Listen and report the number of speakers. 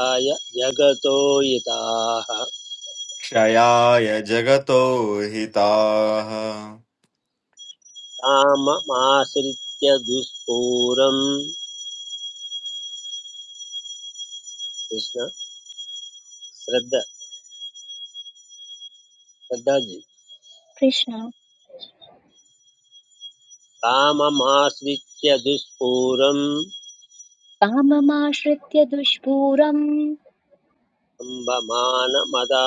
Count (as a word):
three